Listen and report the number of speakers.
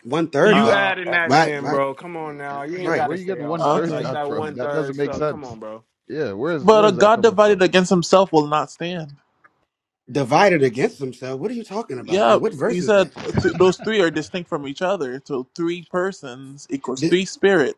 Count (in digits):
4